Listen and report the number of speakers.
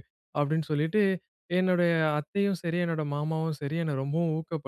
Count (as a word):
one